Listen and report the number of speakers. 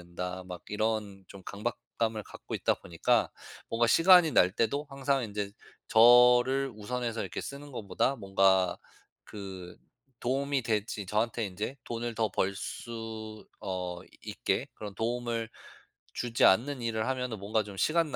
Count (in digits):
1